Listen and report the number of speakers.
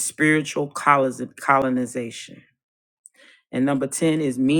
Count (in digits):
1